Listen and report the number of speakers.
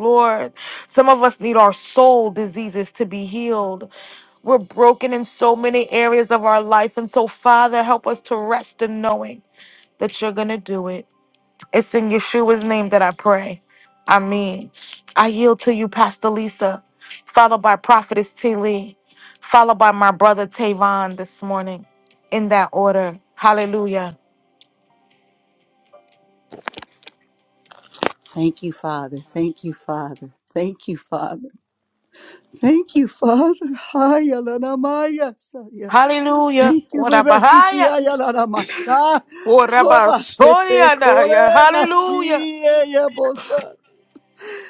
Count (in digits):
2